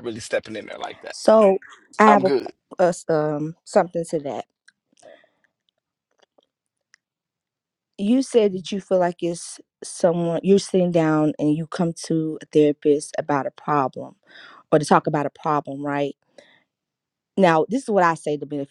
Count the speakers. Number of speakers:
two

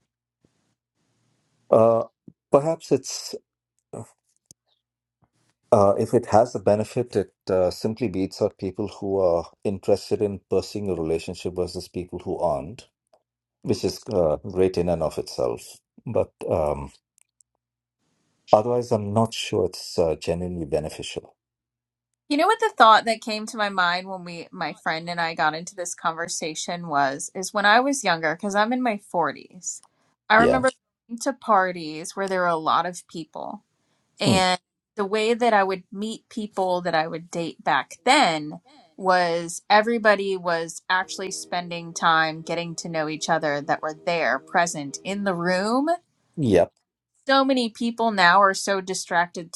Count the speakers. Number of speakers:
two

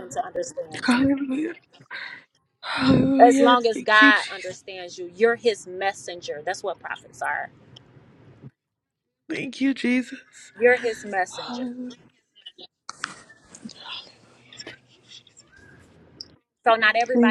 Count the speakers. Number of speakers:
two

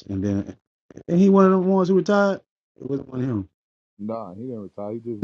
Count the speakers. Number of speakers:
two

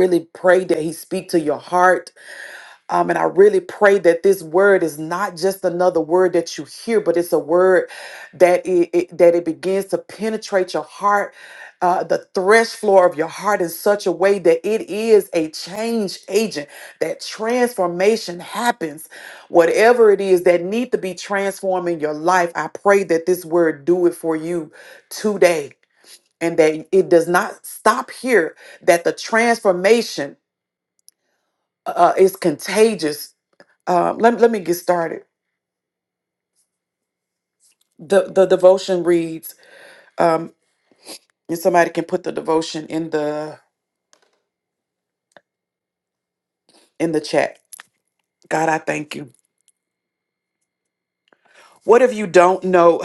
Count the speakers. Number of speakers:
one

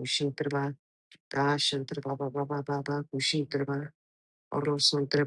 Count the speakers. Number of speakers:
one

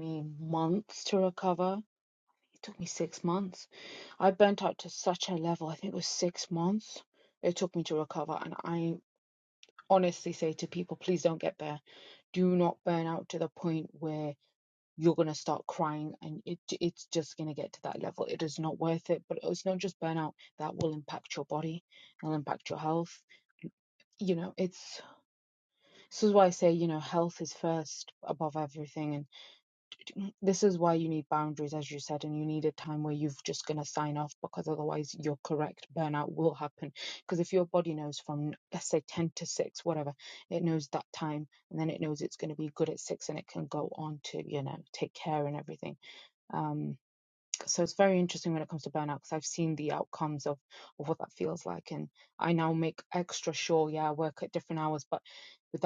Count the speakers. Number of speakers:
one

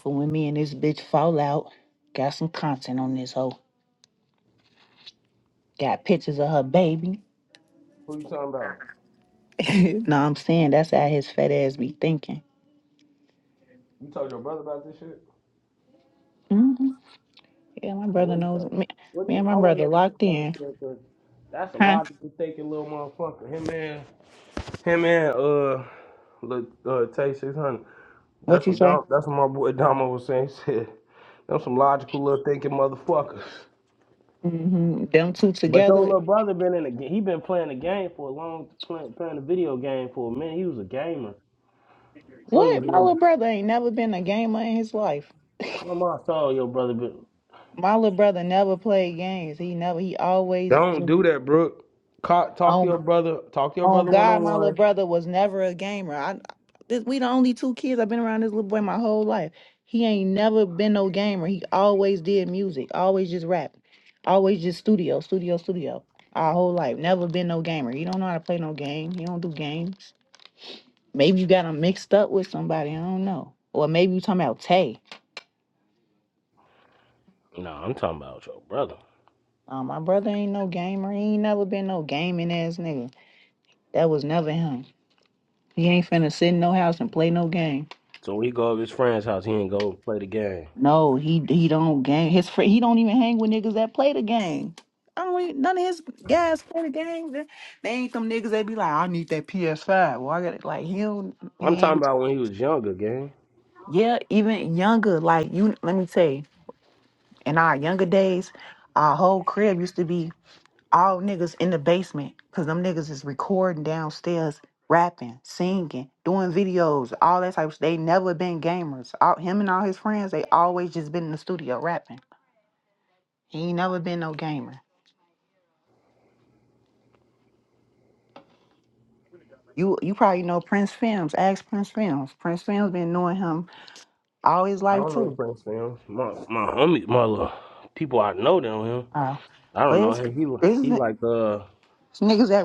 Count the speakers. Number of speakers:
two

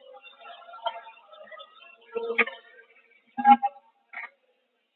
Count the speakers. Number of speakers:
zero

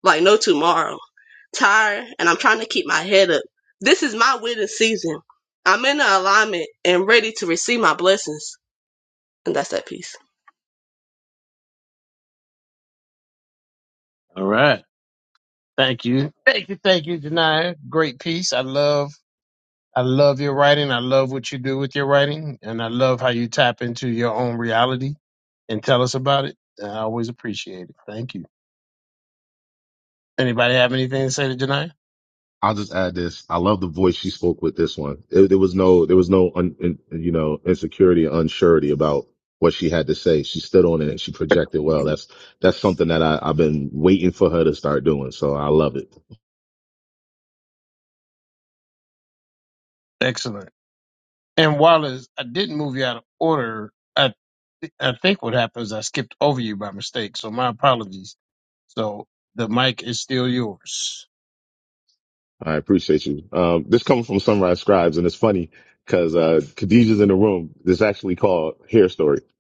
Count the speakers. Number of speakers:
three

